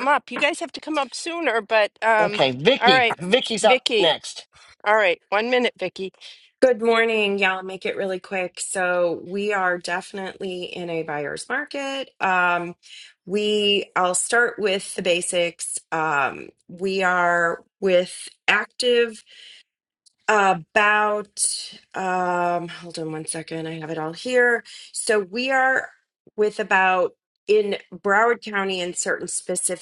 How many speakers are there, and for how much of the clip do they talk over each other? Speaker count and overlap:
3, about 4%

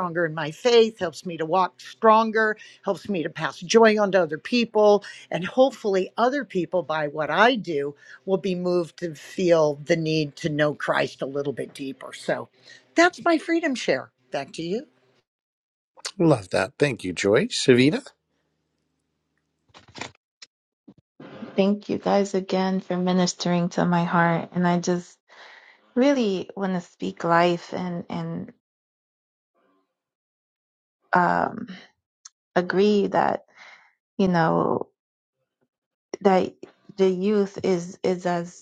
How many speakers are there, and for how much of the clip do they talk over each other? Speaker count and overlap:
3, no overlap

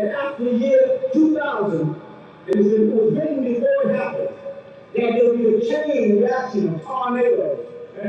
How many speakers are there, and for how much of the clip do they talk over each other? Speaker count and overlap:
1, no overlap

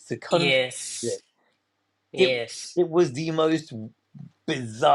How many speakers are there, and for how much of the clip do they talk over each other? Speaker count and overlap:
2, about 15%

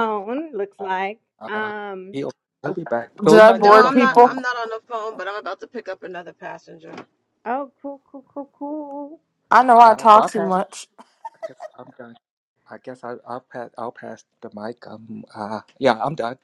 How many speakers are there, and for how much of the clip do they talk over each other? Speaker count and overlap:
4, about 14%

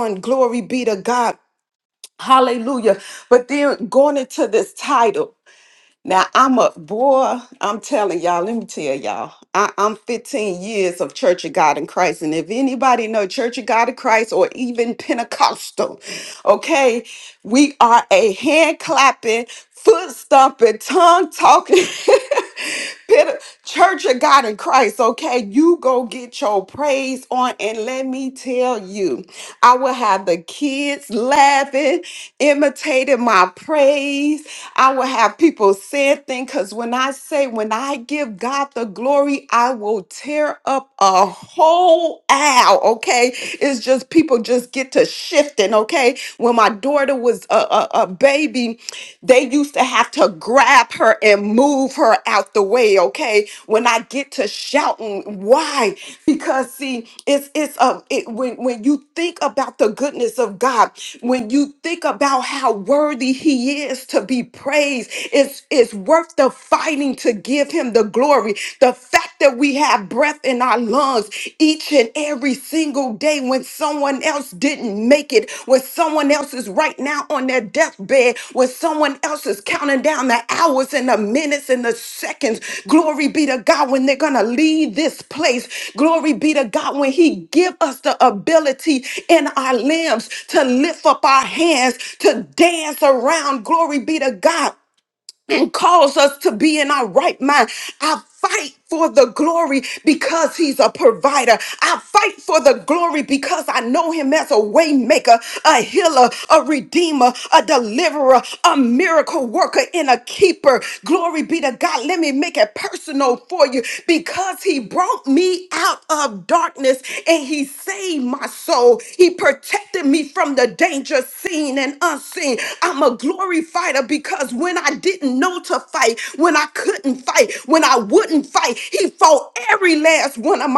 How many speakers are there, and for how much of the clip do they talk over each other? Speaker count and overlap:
1, no overlap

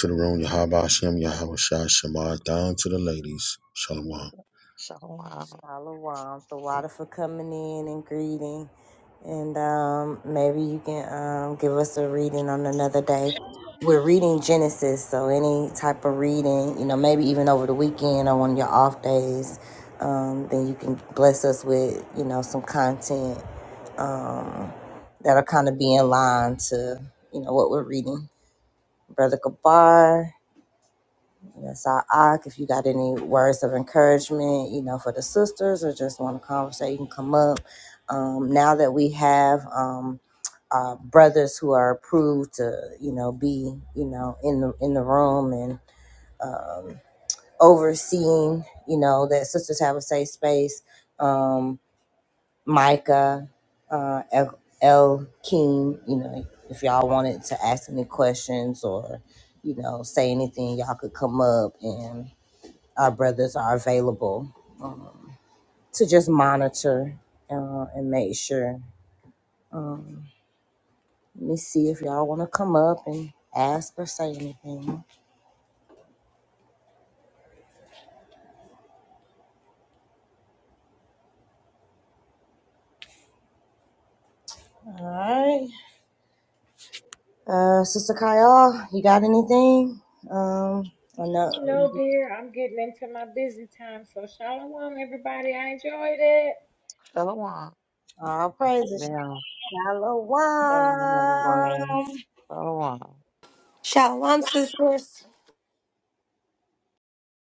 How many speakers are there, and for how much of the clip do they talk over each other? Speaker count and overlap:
5, about 1%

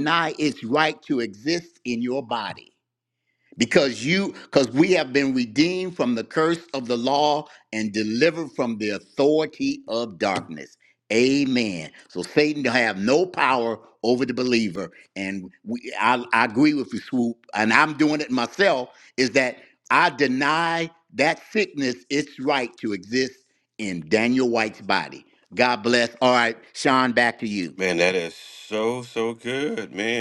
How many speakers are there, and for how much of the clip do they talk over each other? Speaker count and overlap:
2, no overlap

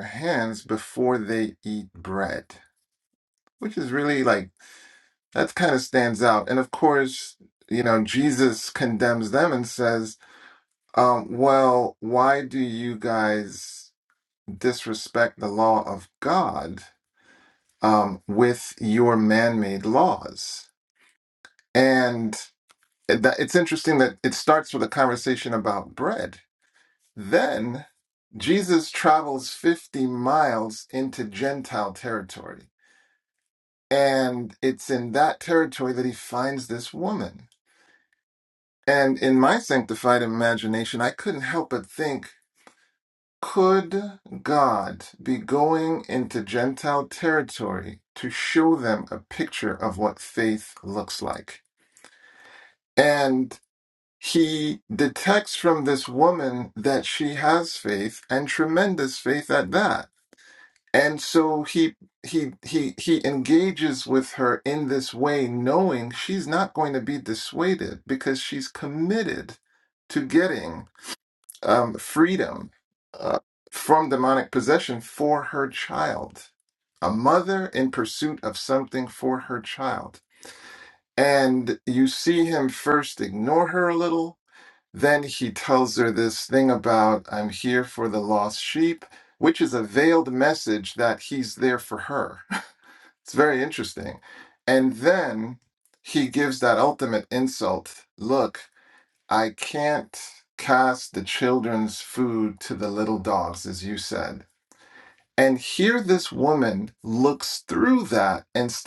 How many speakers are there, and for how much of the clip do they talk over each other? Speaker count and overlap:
1, no overlap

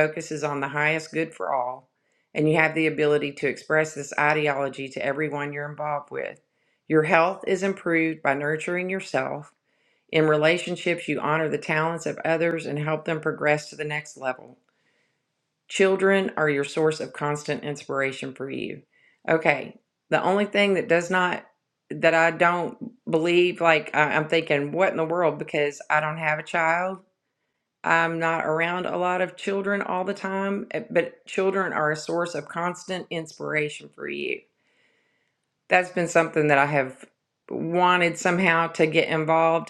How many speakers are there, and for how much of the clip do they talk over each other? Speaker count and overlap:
1, no overlap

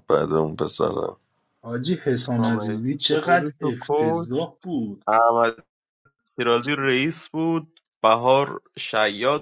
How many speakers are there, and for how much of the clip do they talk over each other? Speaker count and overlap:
3, about 22%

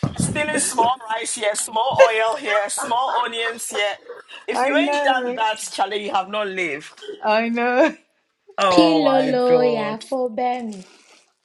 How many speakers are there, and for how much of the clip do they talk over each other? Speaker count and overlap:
3, about 20%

